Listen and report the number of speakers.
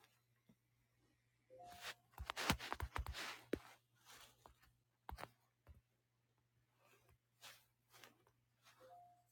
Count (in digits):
0